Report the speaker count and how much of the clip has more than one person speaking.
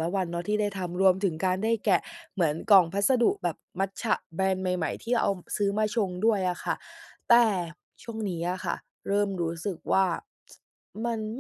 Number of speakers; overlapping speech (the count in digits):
1, no overlap